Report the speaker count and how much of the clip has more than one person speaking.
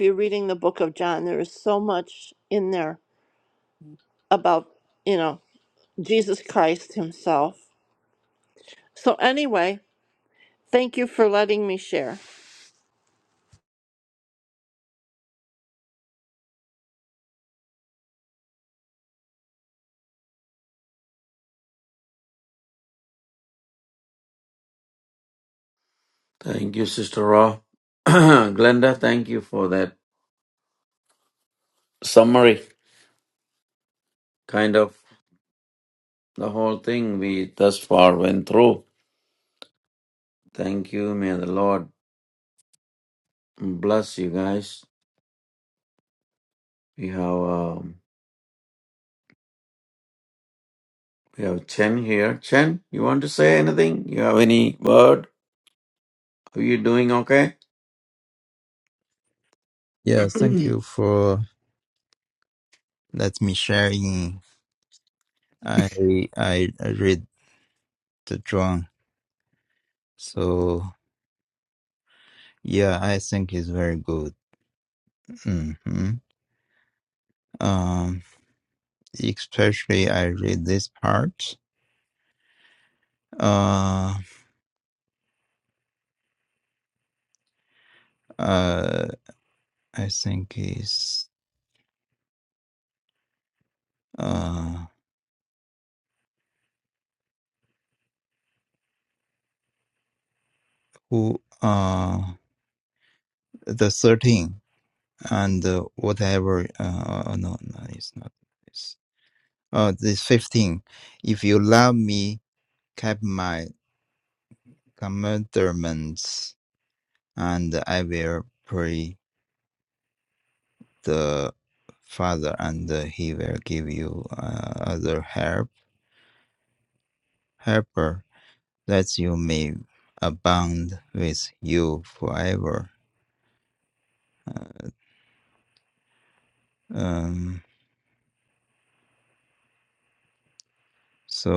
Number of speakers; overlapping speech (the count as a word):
three, no overlap